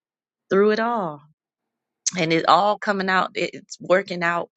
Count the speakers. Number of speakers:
1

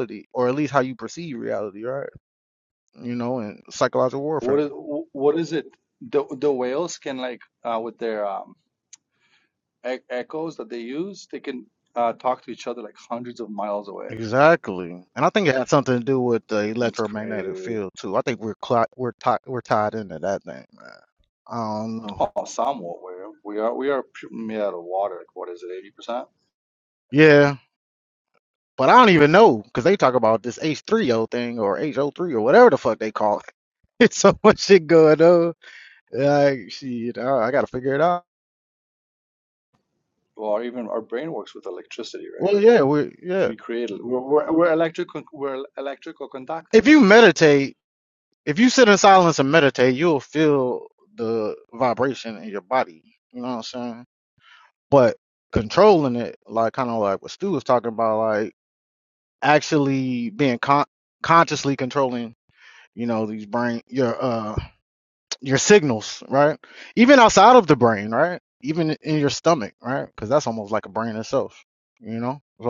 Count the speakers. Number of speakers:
2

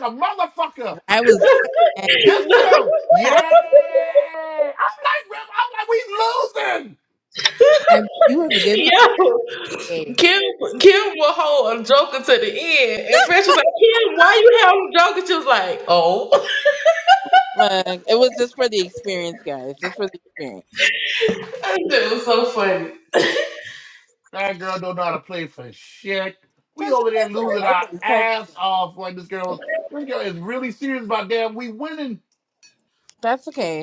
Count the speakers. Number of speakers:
3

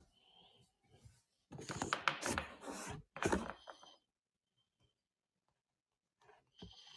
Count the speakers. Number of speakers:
0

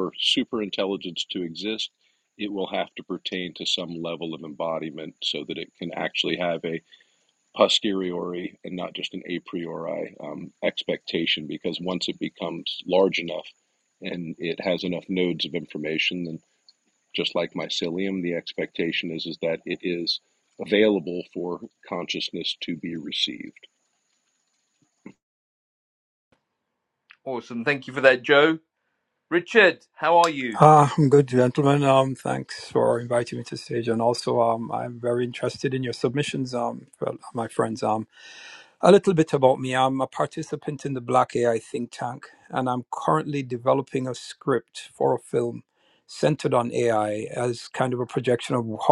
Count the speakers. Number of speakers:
3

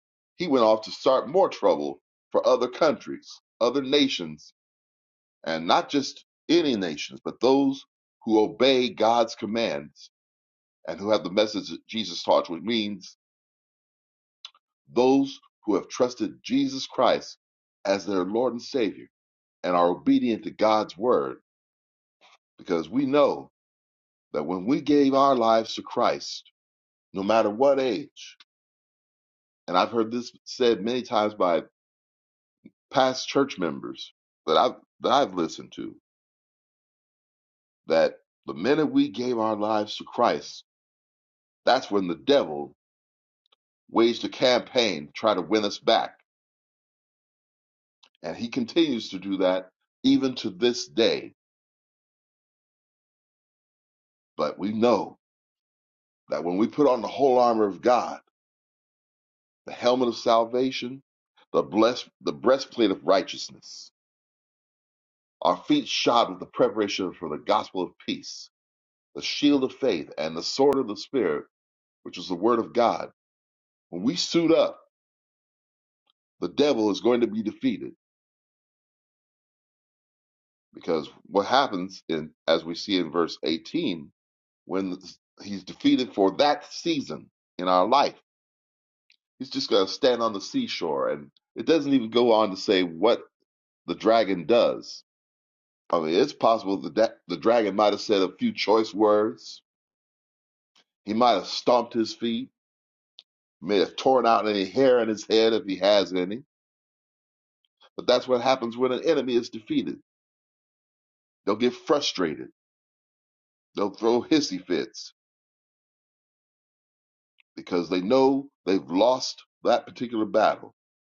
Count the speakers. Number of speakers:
1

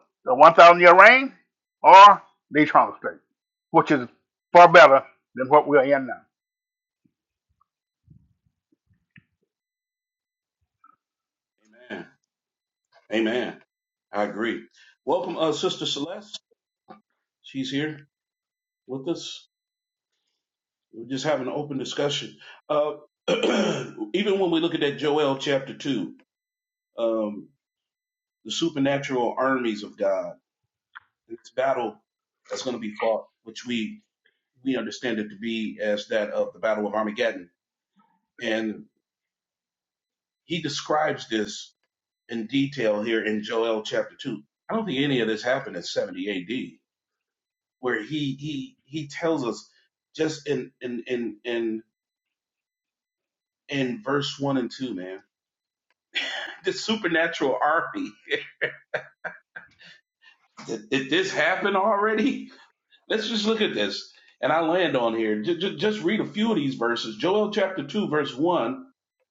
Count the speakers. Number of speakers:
2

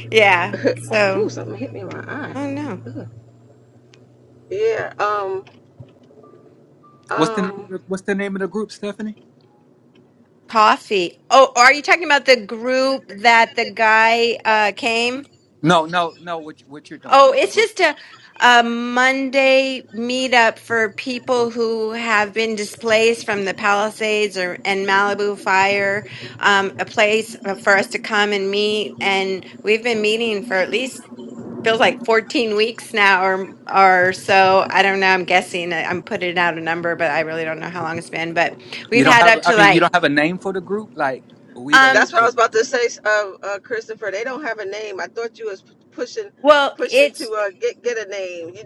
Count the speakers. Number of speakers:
3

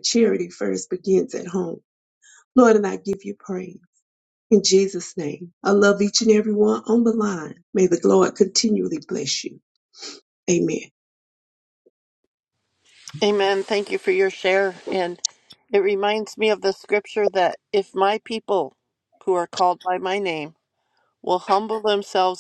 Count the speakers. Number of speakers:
2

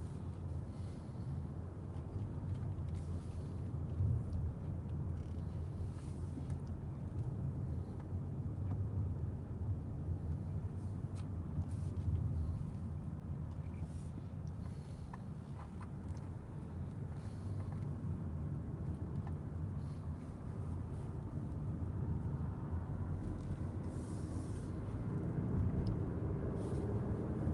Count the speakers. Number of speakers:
0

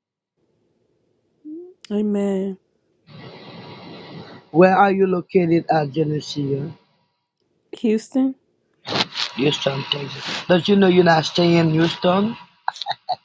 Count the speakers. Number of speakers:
2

